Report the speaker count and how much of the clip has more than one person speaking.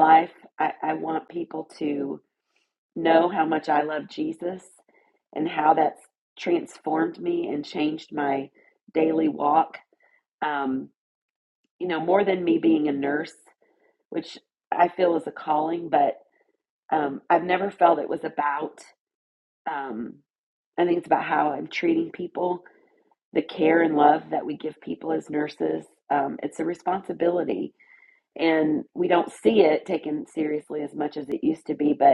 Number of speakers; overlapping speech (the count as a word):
one, no overlap